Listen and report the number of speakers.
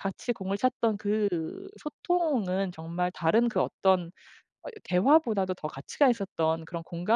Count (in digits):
1